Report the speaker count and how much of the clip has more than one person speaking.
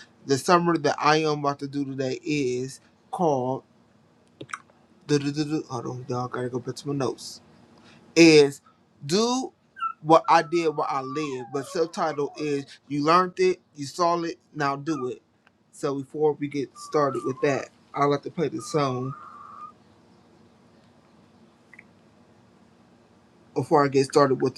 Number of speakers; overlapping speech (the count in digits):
1, no overlap